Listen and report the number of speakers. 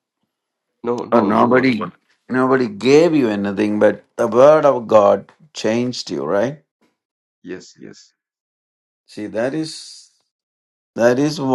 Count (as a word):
two